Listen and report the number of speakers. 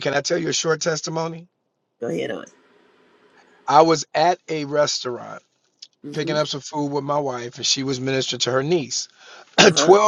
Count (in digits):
2